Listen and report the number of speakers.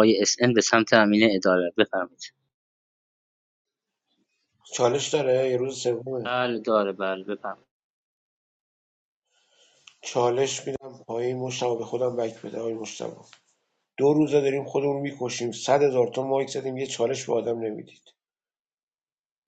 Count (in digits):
2